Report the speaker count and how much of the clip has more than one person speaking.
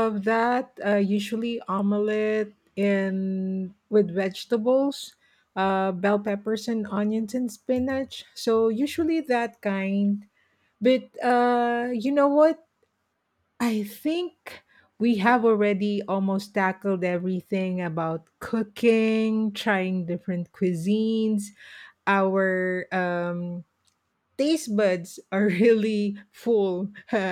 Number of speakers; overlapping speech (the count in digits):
1, no overlap